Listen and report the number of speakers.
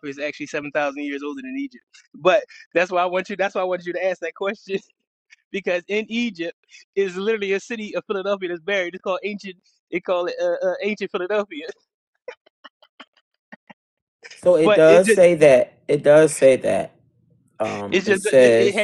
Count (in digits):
2